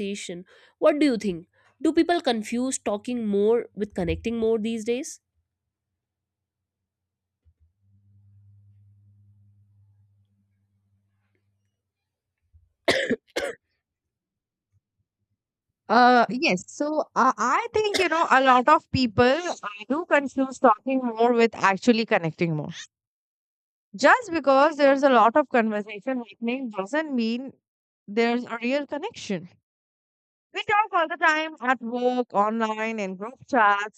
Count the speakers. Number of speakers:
two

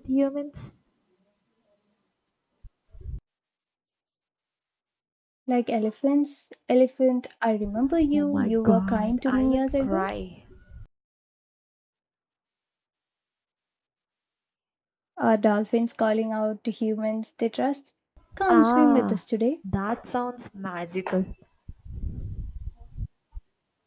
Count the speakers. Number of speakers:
two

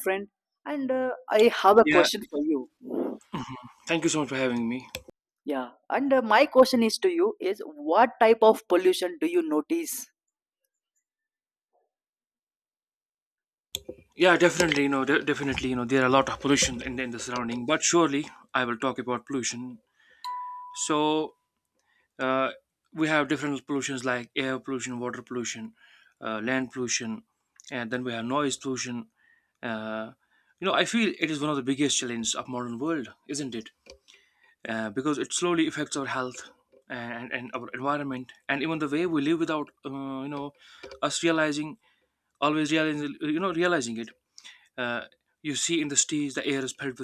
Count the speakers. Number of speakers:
two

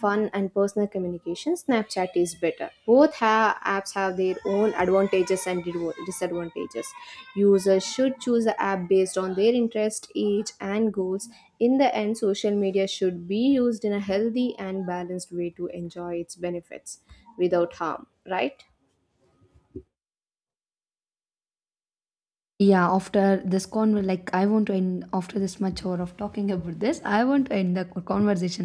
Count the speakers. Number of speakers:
two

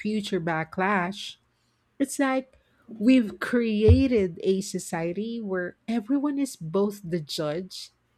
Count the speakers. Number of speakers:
one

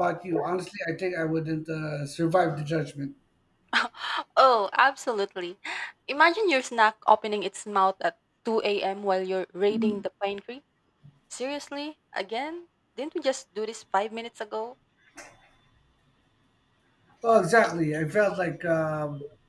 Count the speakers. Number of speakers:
two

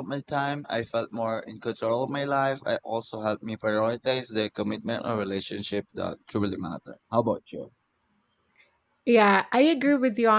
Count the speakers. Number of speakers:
two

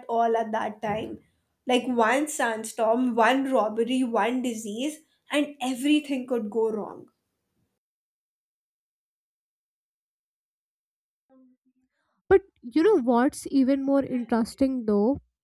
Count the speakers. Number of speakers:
two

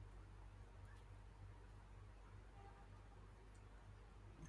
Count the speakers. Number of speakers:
zero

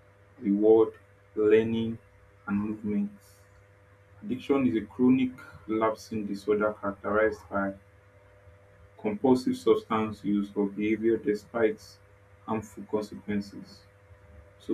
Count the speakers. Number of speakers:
one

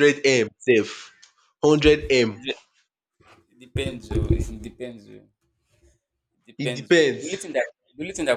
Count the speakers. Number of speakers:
two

